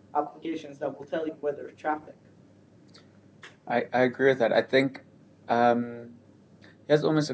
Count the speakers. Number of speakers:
2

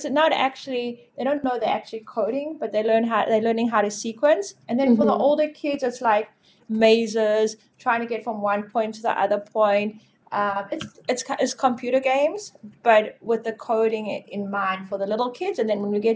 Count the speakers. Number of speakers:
1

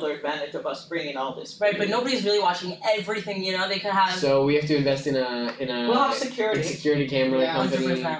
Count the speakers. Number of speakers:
3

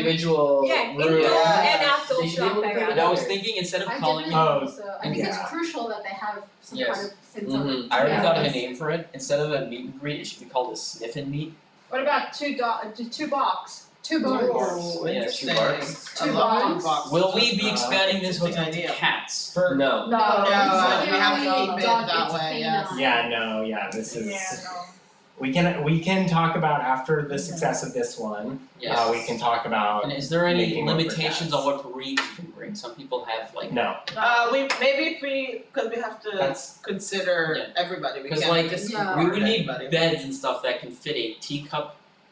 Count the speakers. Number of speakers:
6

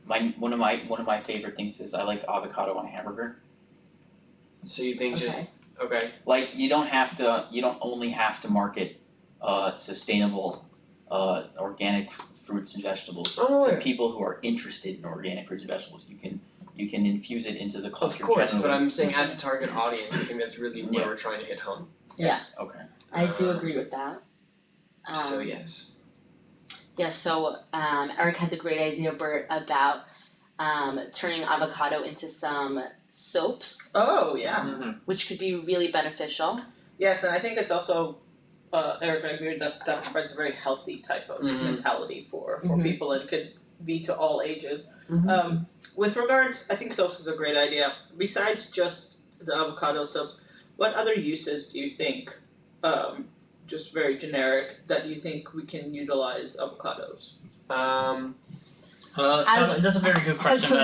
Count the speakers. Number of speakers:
5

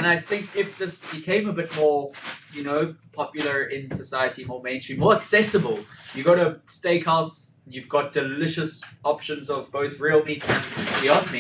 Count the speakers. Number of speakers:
1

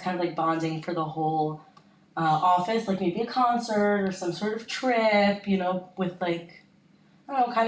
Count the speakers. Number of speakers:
1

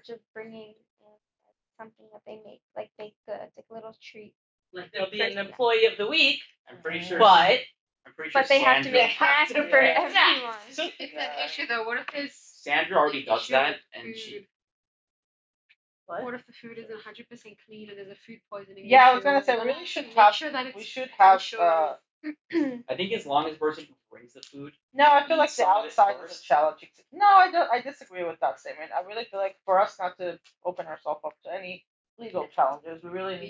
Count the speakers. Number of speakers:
5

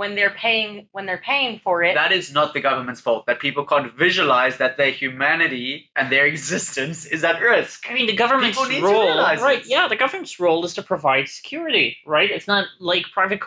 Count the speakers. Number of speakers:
3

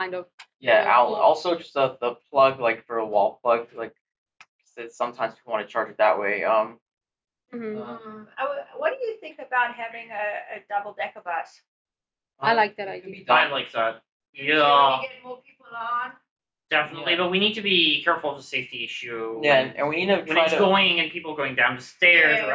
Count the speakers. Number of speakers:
4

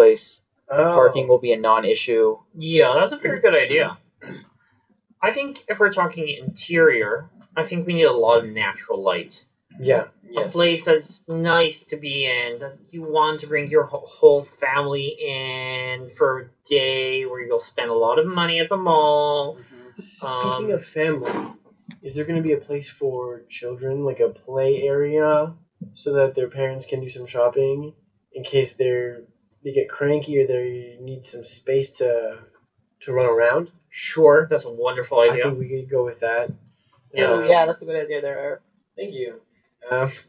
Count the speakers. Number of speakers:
4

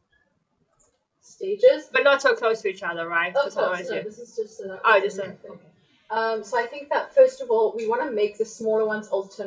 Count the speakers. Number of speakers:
2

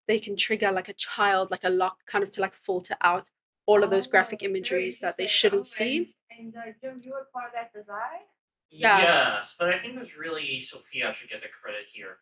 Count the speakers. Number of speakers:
3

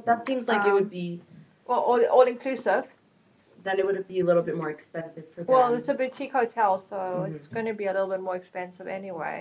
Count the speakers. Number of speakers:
2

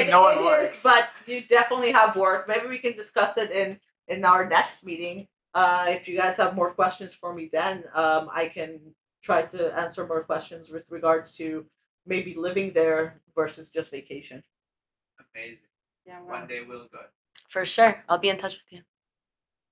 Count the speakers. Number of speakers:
3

